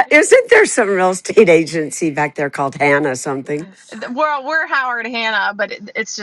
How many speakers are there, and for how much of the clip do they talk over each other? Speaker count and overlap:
2, no overlap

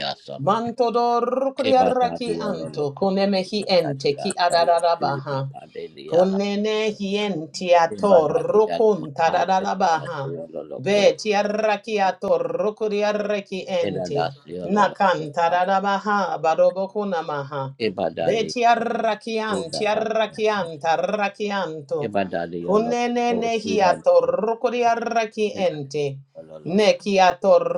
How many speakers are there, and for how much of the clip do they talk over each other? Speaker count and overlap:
2, about 33%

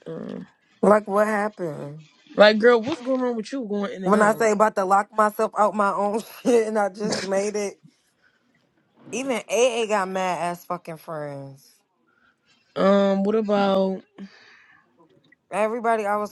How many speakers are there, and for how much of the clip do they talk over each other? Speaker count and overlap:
2, about 2%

